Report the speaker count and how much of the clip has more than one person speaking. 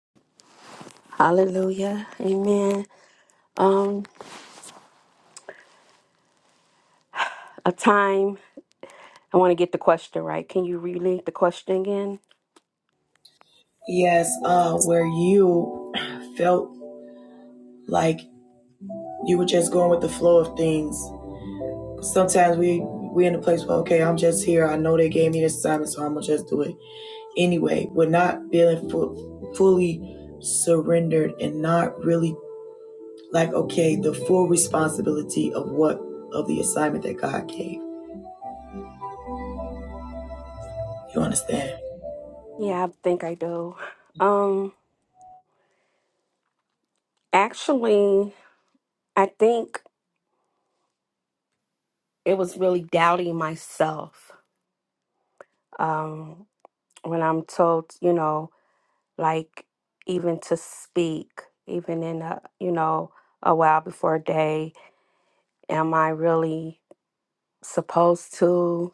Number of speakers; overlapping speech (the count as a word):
two, no overlap